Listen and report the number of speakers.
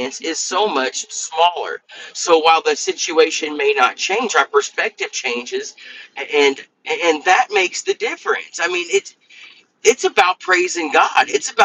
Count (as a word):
one